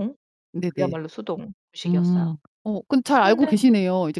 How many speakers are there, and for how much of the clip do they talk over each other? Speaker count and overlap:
2, about 18%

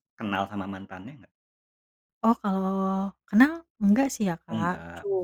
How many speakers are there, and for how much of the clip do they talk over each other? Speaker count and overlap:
2, about 10%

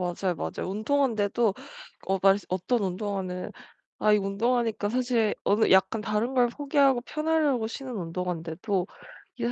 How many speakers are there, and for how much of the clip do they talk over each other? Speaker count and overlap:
1, no overlap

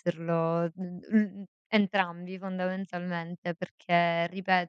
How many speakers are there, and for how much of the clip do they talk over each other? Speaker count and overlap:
1, no overlap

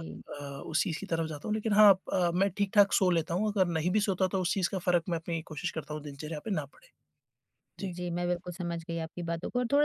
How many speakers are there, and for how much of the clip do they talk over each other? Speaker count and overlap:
2, about 1%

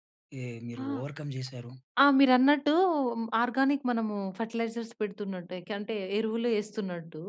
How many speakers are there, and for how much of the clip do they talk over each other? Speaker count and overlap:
2, about 2%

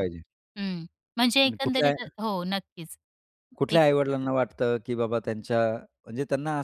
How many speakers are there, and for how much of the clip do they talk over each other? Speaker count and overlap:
2, about 11%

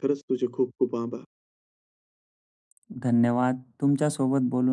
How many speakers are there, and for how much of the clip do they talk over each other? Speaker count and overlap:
2, no overlap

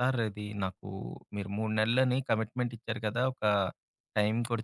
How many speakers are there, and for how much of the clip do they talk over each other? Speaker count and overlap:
1, no overlap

